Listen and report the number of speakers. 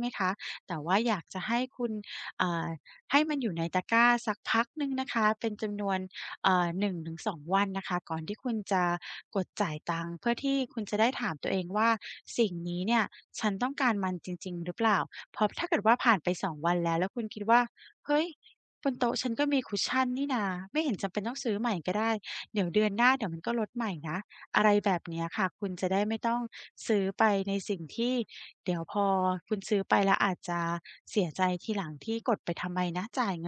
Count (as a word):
one